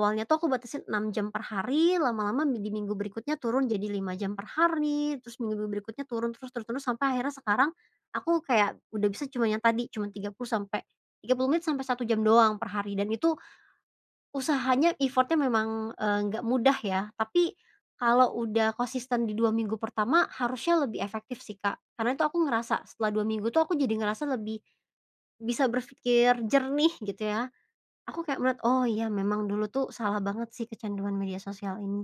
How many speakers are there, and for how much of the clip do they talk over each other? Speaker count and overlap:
1, no overlap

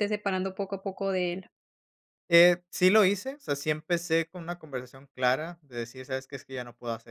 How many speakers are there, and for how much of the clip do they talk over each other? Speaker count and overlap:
2, no overlap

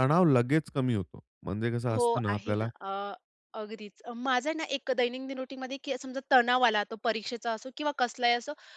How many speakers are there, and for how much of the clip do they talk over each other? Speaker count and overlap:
2, about 9%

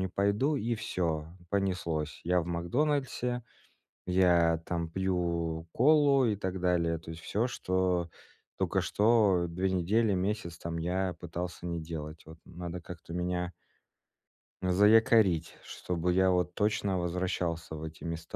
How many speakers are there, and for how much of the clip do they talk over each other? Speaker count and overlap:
1, no overlap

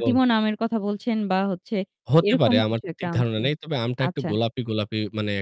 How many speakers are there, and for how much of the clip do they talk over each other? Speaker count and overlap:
2, about 32%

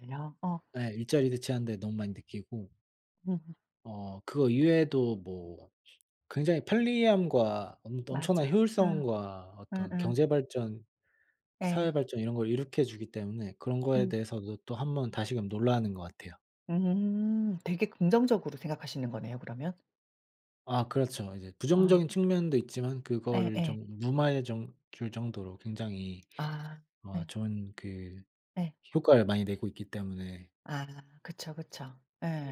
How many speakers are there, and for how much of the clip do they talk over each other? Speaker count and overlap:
2, about 8%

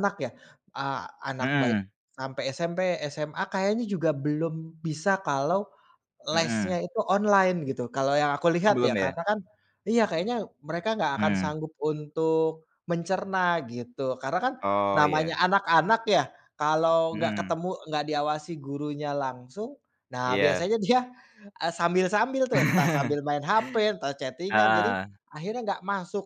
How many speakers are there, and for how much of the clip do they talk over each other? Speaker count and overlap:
2, about 12%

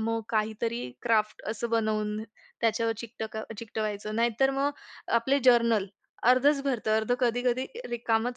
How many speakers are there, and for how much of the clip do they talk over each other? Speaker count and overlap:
1, no overlap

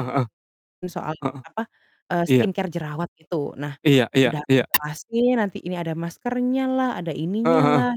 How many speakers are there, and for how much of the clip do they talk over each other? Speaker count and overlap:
2, about 14%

